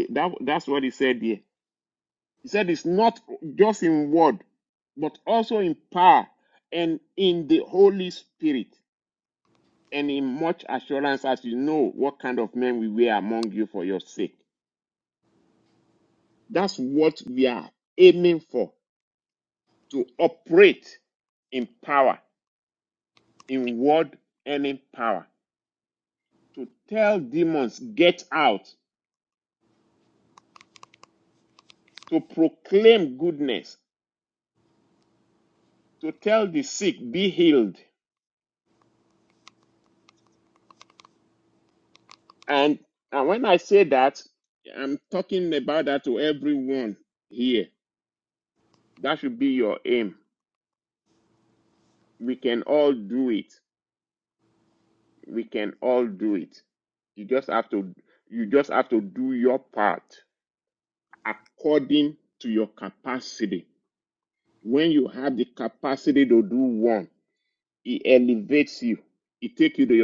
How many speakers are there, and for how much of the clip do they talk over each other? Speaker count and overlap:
1, no overlap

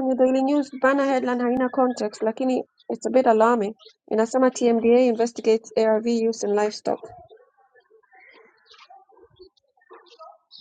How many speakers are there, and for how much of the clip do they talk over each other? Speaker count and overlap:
1, no overlap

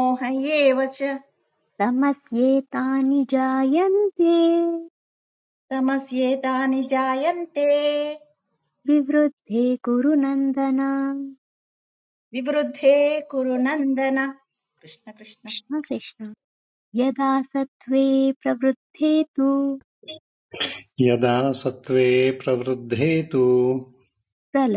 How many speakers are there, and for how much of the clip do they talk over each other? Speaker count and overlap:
3, no overlap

